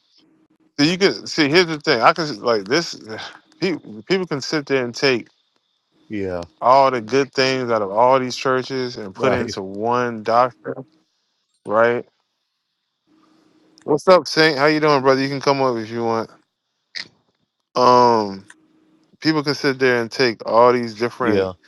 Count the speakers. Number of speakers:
2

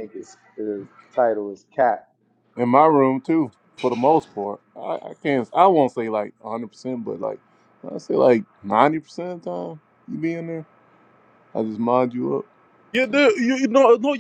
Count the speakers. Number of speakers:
3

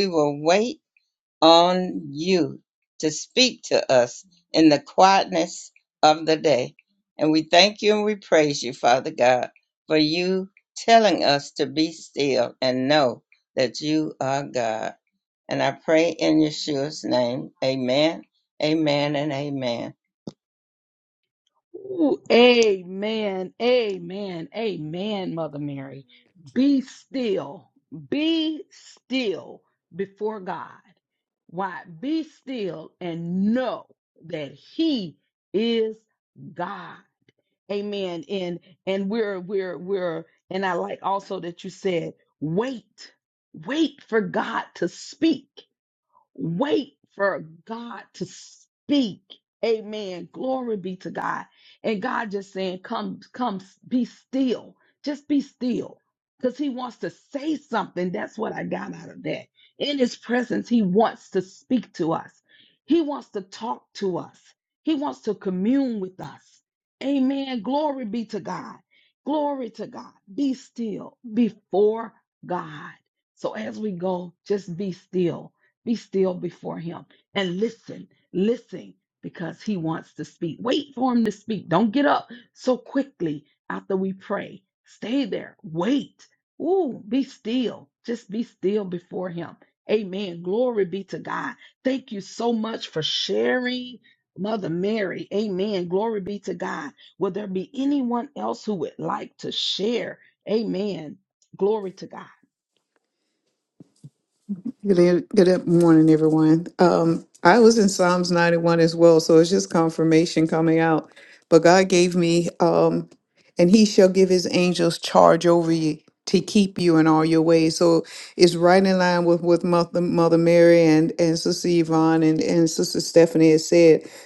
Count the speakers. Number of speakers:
3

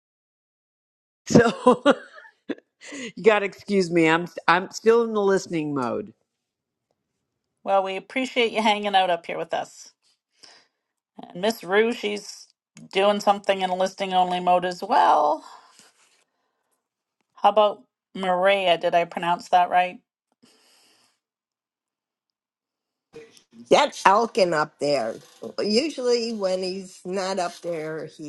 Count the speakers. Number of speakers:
3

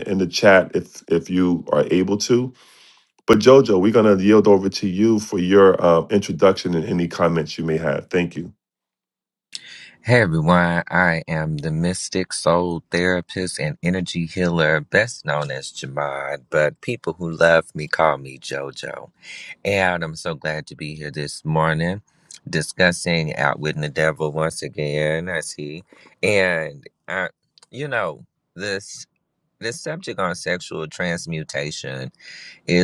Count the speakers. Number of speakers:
2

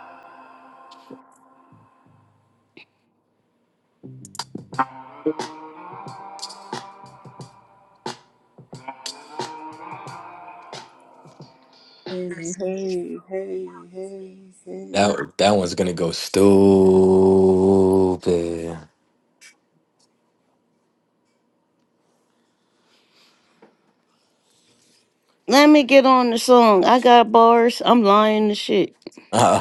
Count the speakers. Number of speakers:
3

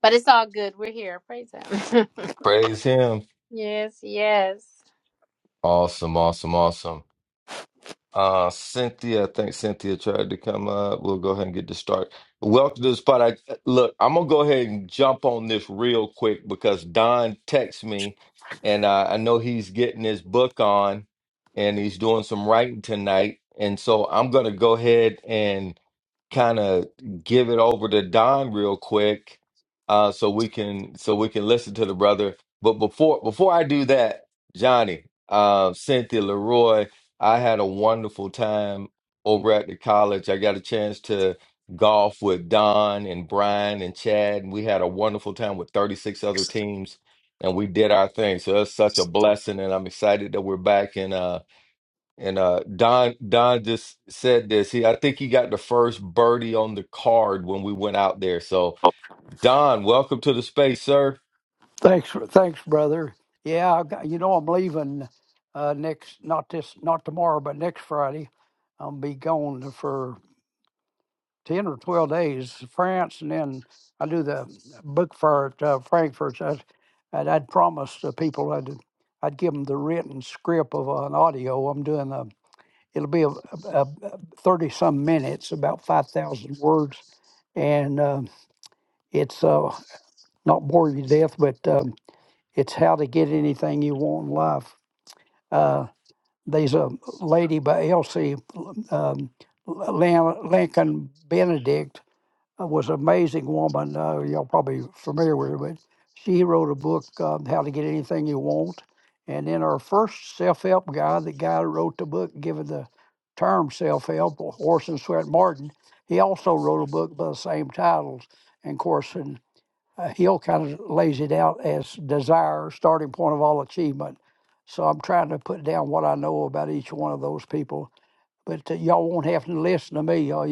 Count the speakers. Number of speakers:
3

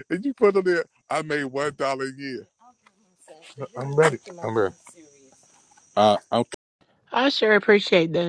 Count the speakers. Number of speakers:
2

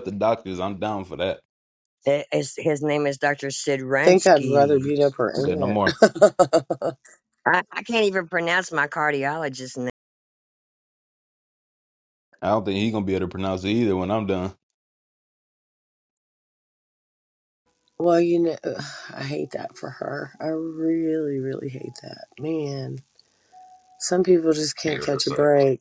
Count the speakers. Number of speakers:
3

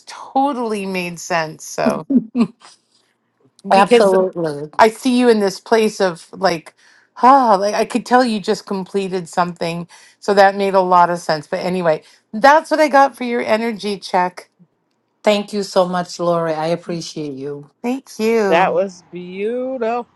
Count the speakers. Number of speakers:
3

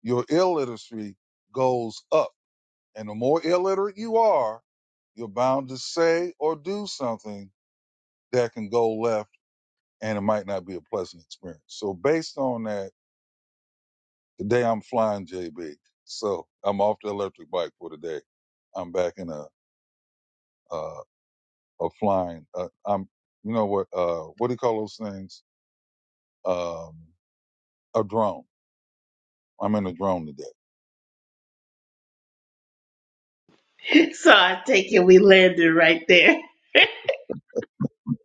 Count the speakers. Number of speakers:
2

